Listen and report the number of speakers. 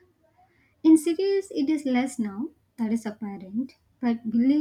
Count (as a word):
one